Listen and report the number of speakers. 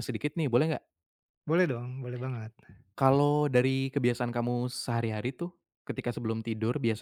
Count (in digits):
2